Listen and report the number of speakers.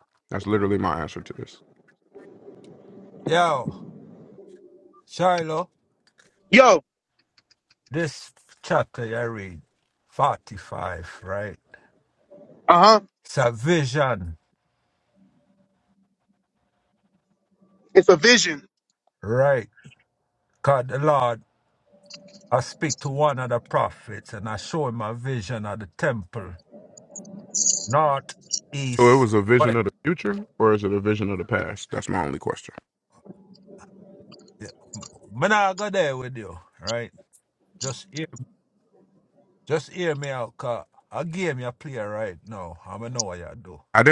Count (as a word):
three